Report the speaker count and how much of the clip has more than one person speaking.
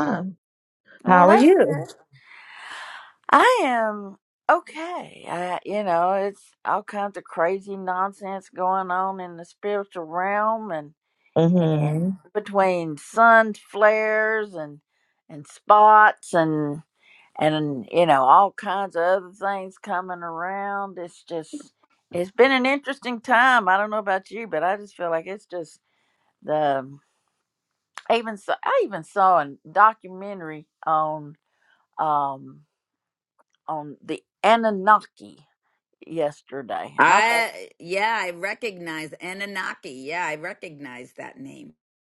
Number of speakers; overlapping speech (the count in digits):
3, about 4%